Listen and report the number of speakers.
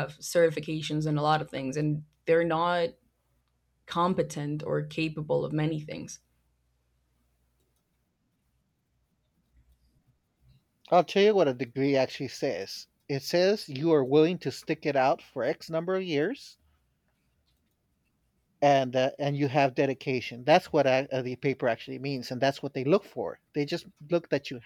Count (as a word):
two